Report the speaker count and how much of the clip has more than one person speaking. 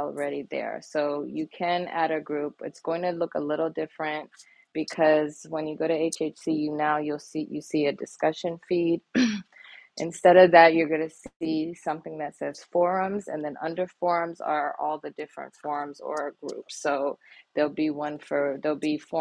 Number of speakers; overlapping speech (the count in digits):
1, no overlap